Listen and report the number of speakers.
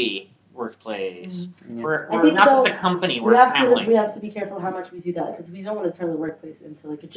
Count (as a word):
two